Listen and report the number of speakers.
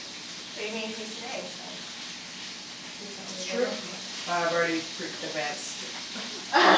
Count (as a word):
two